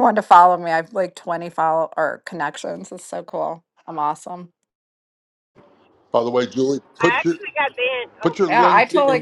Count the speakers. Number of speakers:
3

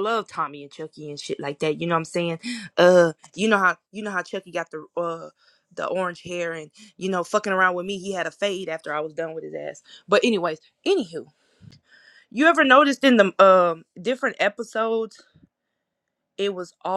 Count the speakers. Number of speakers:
1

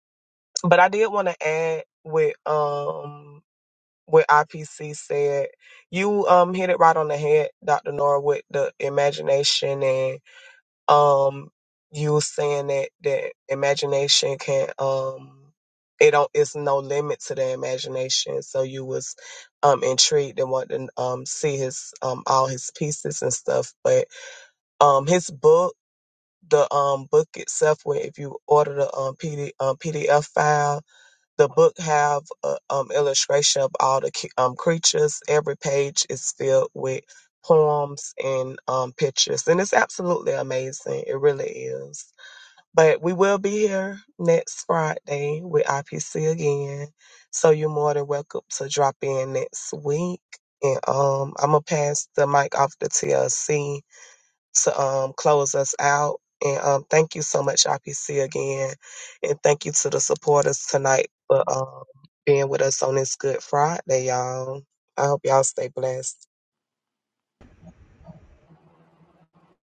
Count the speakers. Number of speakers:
1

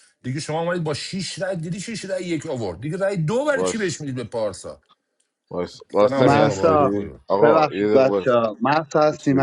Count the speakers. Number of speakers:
3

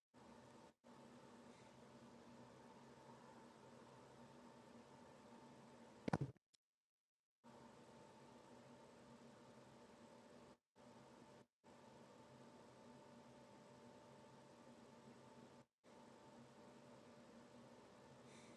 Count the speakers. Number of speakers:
0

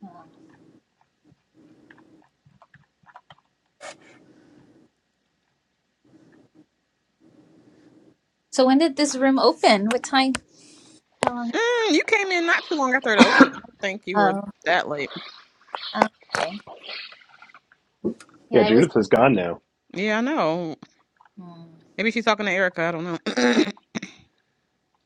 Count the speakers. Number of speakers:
3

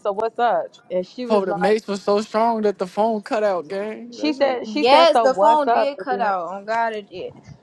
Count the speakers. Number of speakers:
3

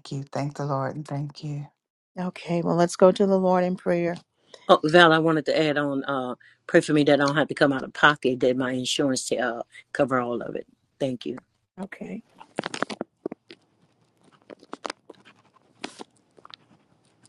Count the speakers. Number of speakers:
3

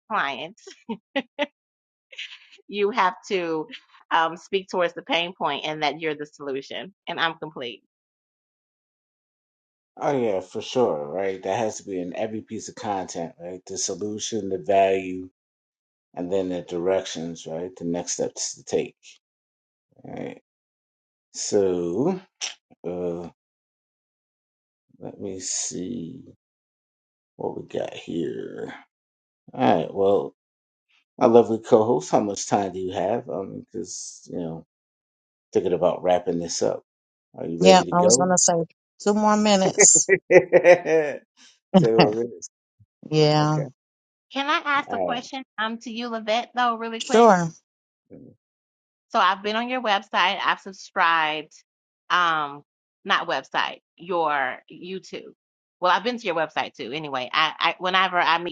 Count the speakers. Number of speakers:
3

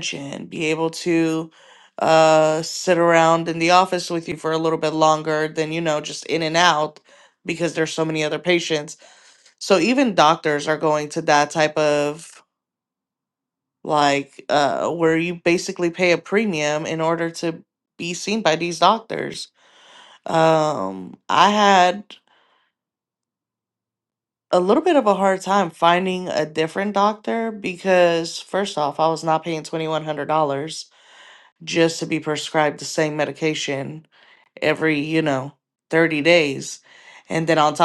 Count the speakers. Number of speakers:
1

